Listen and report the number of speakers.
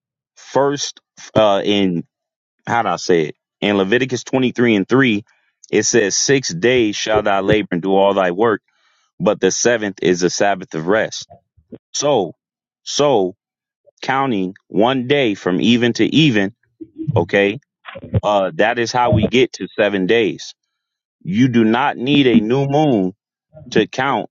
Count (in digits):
1